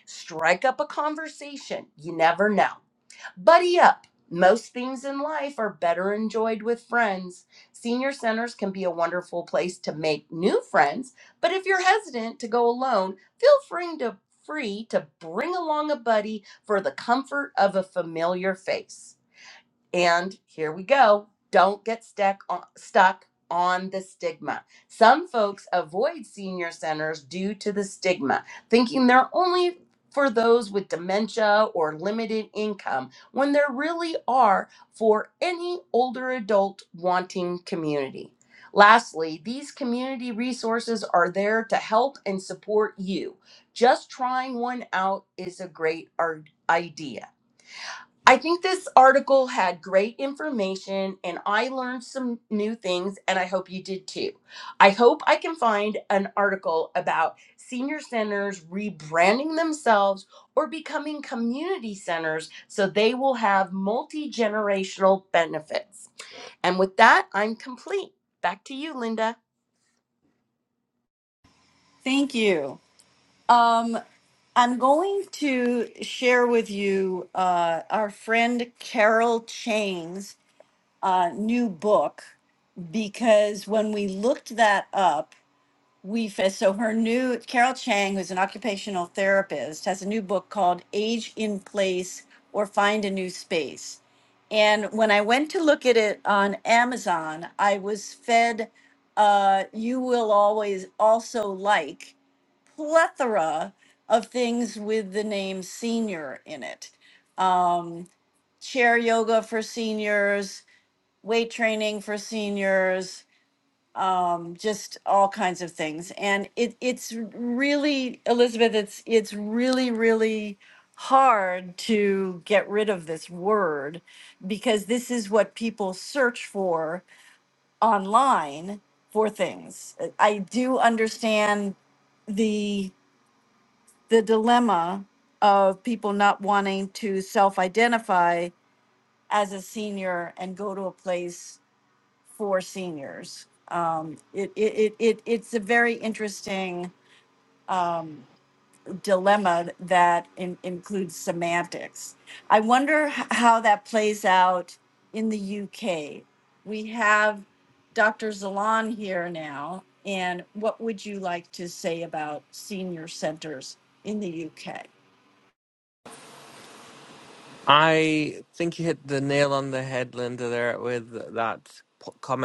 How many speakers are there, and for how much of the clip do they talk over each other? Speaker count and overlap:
three, no overlap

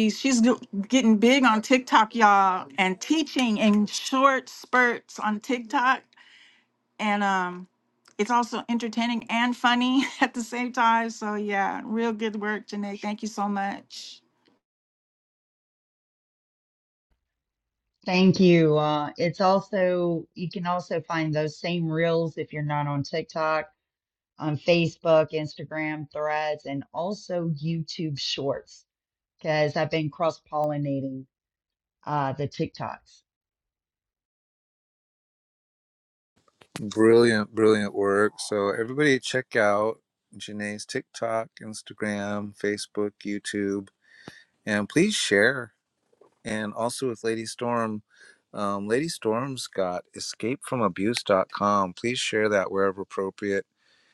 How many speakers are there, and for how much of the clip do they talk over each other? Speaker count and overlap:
three, no overlap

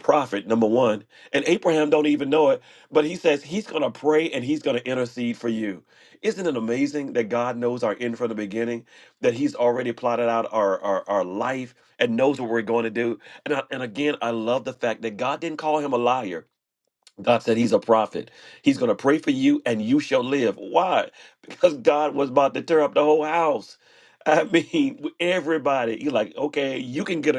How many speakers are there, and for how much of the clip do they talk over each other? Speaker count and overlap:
one, no overlap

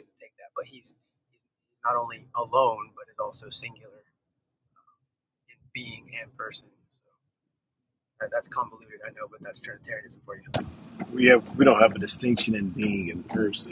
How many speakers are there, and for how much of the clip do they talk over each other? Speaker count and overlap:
two, no overlap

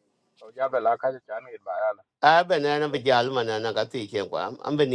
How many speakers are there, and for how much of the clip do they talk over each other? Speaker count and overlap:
two, about 2%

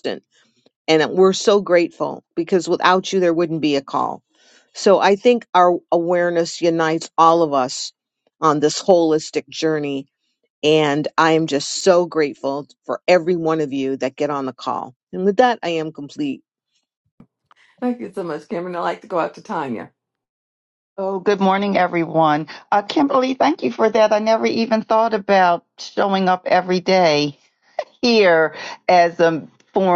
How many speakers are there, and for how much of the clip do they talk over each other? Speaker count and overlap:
three, no overlap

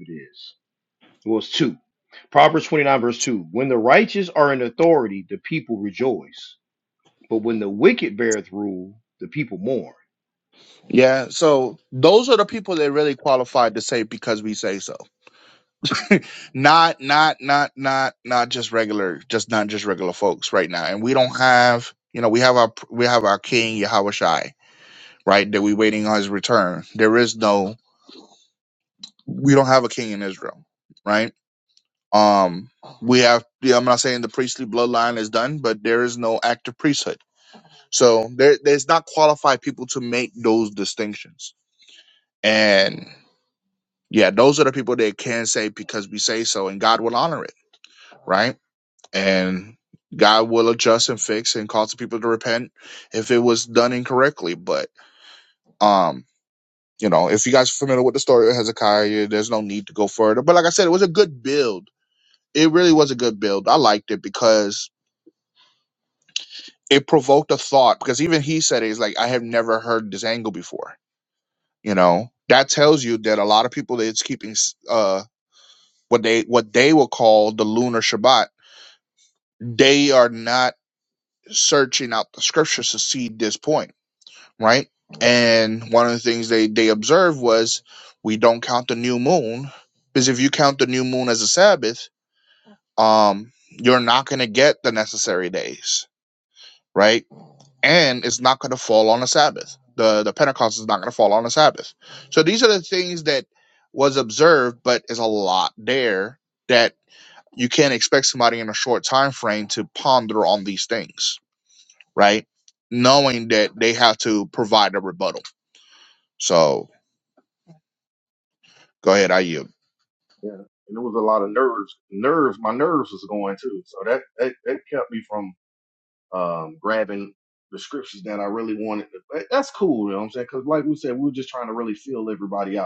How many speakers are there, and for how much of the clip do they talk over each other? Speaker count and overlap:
three, no overlap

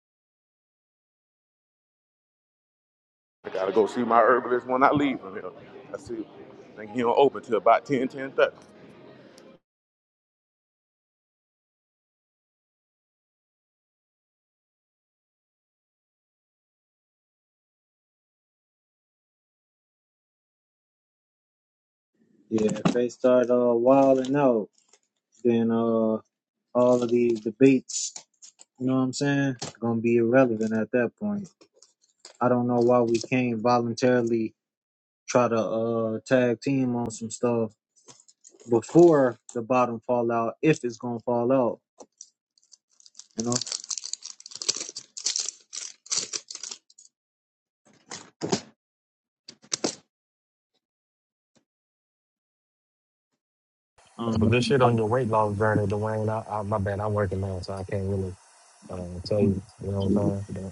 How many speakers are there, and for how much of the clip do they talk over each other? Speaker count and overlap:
three, under 1%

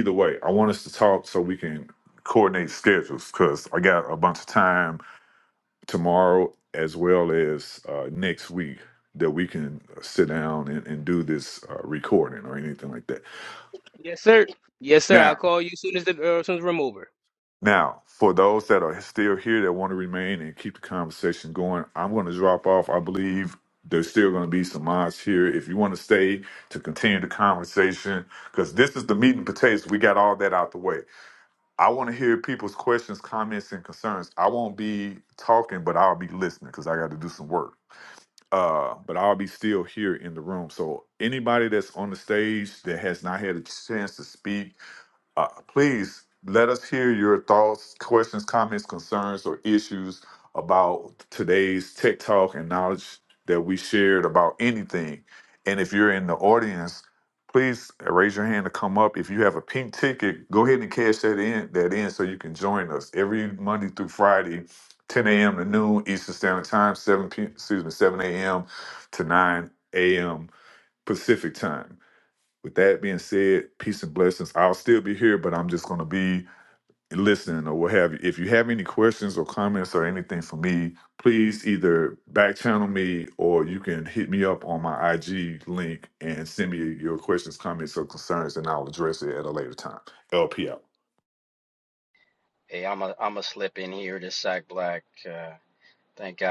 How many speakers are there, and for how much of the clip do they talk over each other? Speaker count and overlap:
three, under 1%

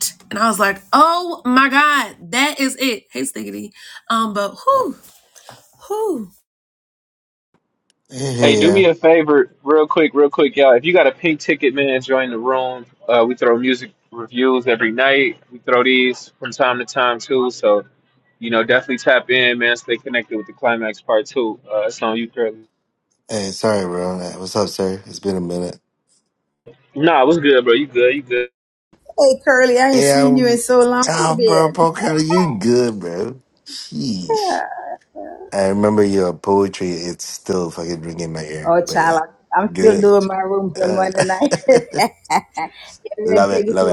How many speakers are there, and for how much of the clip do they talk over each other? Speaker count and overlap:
four, about 8%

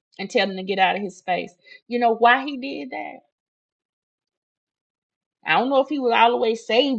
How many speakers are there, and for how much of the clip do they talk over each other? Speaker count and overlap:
one, no overlap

